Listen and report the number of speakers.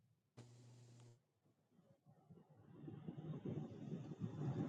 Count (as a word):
zero